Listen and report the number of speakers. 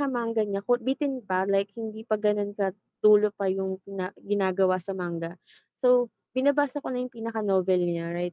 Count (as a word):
one